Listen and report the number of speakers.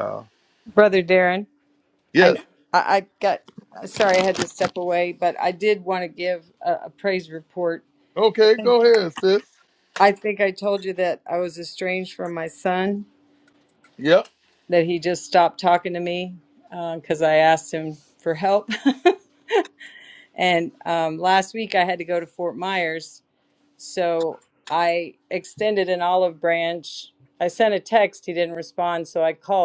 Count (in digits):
2